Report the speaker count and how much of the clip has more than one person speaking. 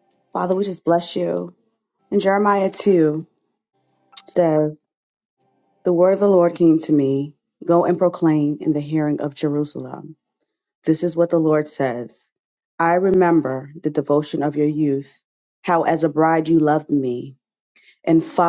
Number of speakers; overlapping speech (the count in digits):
1, no overlap